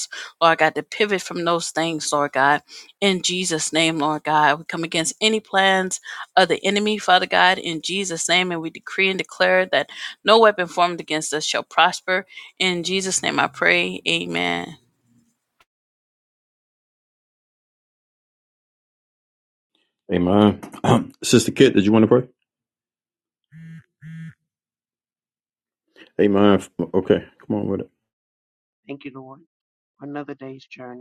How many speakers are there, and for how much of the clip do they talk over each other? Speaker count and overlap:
three, under 1%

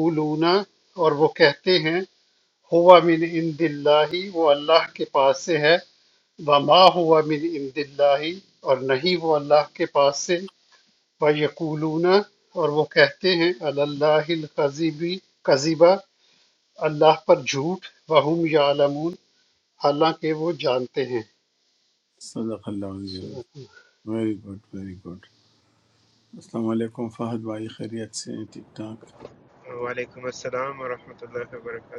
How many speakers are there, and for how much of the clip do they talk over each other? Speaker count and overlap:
three, no overlap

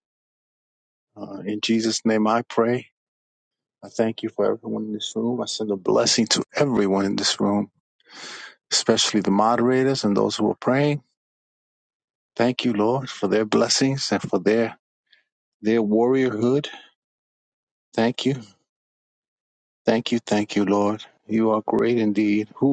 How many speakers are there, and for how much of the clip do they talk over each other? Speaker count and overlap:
one, no overlap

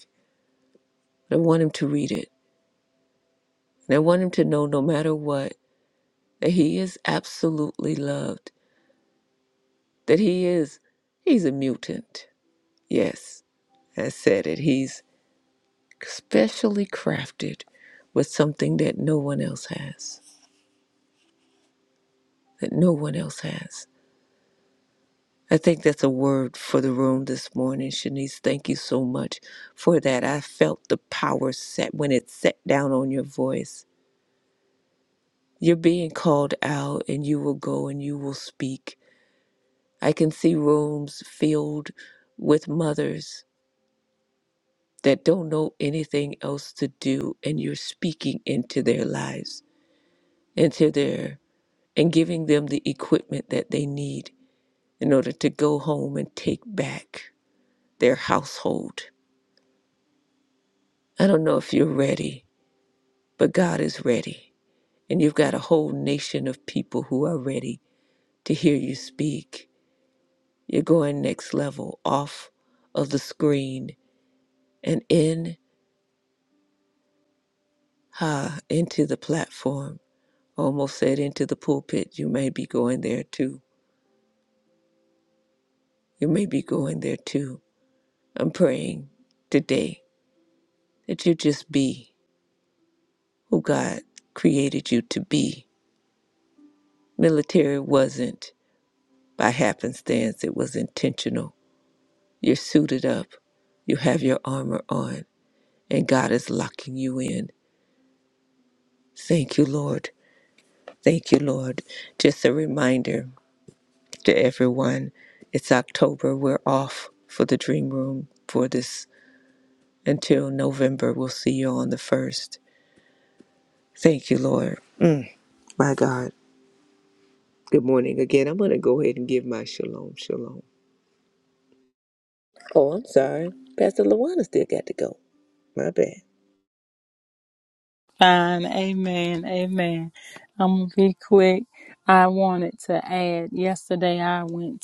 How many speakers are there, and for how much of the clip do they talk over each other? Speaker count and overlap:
two, no overlap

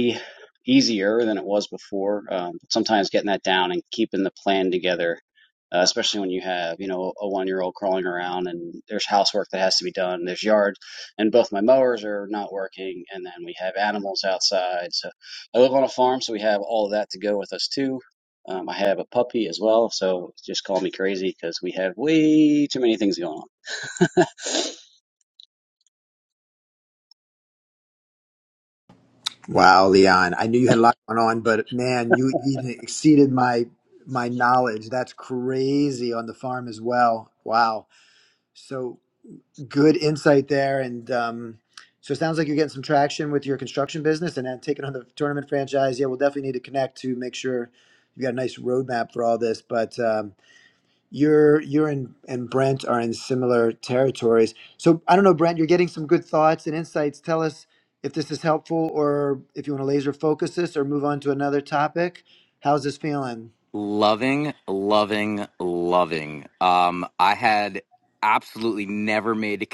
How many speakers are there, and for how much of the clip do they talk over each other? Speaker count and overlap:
three, no overlap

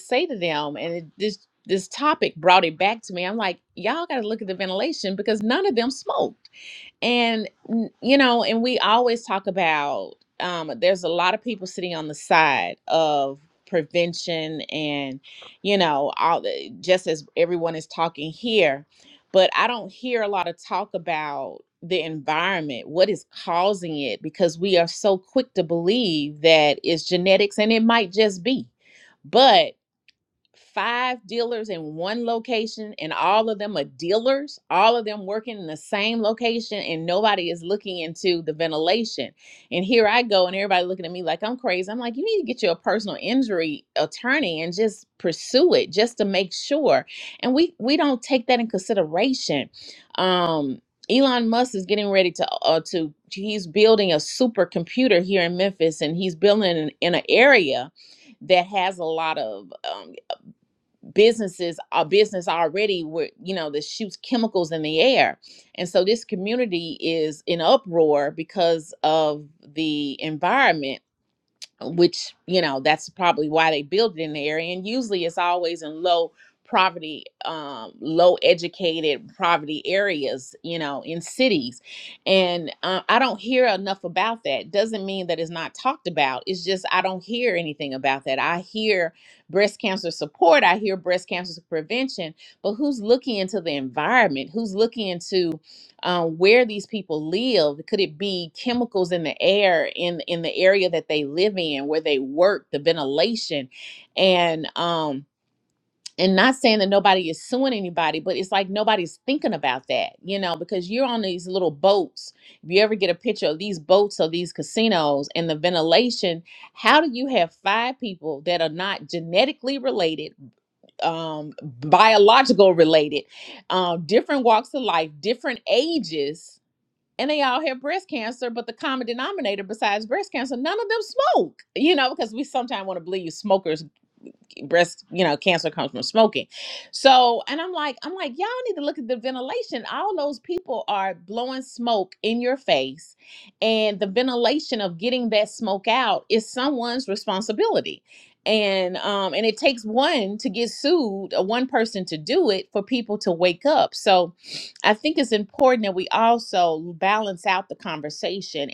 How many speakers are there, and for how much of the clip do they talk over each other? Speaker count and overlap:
one, no overlap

